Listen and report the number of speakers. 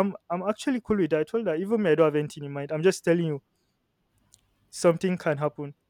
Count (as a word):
one